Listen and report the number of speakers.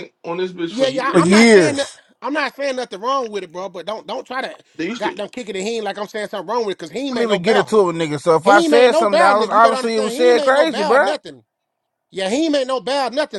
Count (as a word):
three